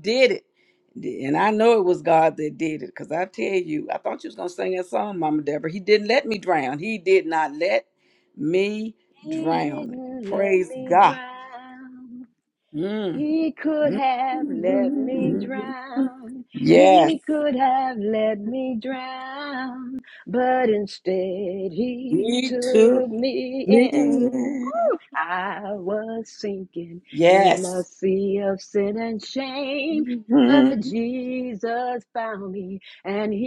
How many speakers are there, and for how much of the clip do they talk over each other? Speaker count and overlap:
two, about 17%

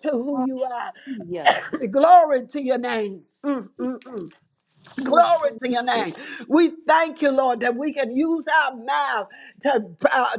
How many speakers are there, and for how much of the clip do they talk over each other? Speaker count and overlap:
two, about 7%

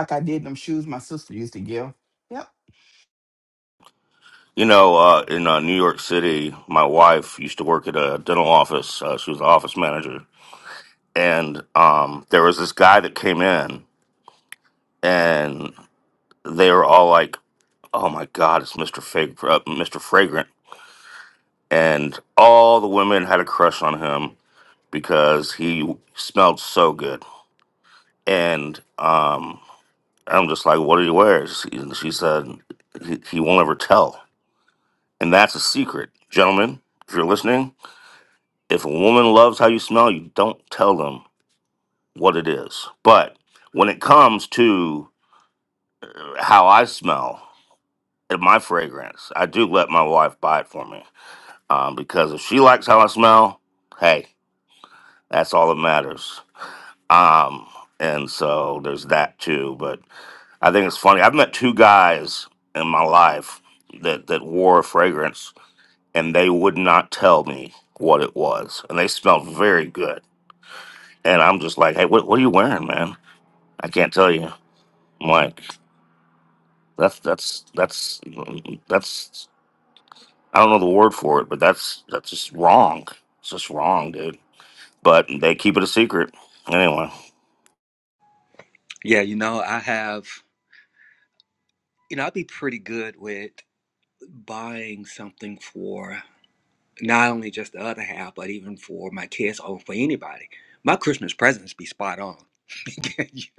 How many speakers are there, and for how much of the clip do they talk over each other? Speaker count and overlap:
three, no overlap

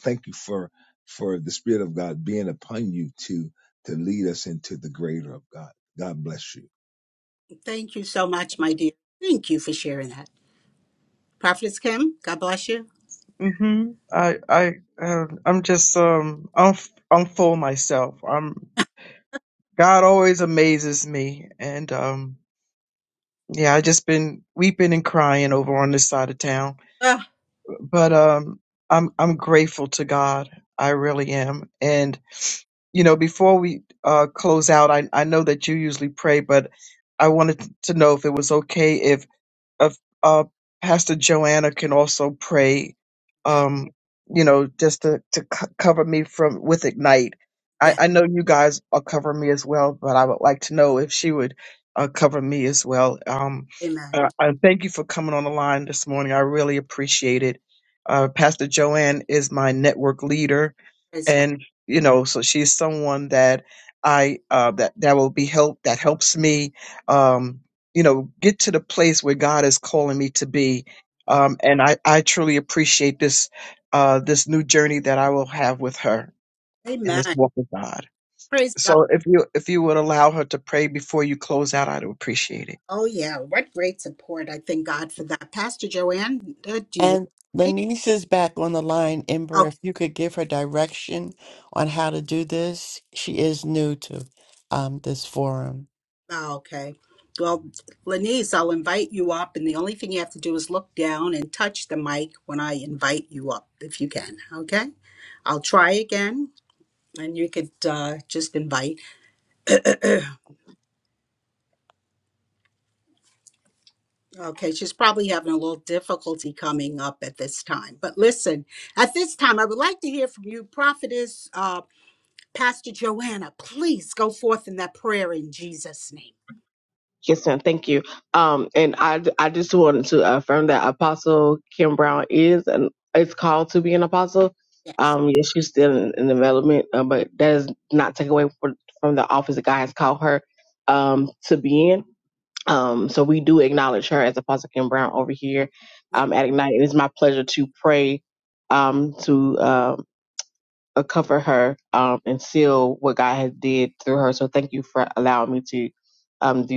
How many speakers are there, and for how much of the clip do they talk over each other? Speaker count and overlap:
five, about 1%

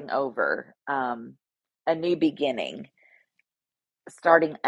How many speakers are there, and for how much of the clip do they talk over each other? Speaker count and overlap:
one, no overlap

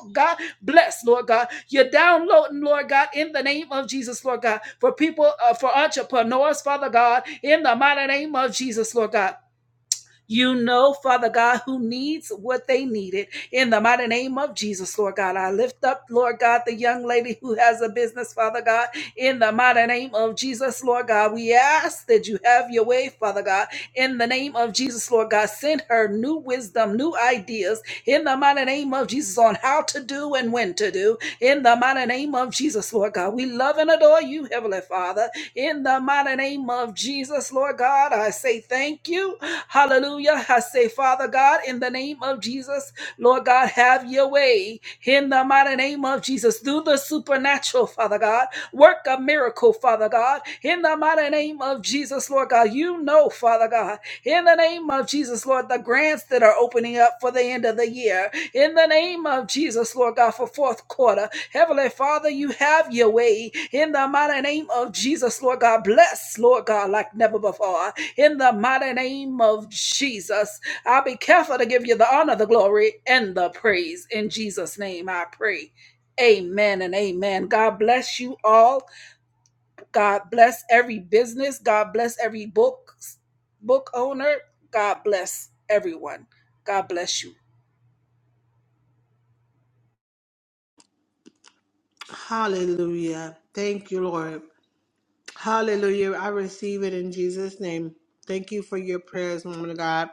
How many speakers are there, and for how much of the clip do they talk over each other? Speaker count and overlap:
two, no overlap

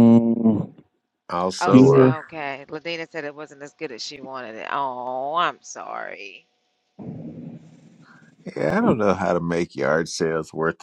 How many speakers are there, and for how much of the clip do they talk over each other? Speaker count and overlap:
three, about 6%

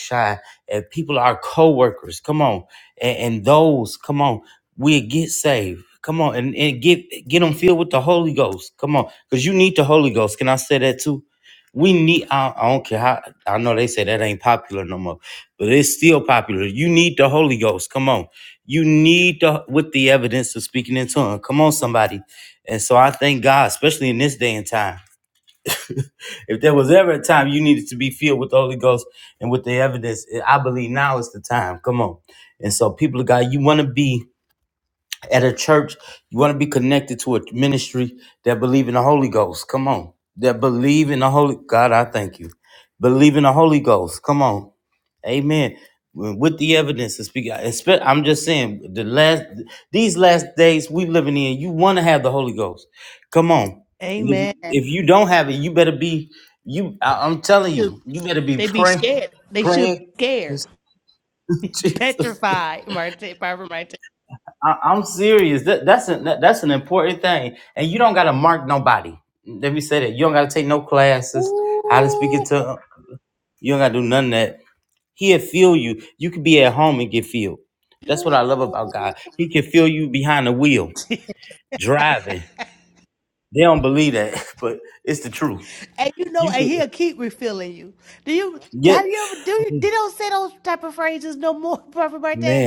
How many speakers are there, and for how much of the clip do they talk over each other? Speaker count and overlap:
two, about 4%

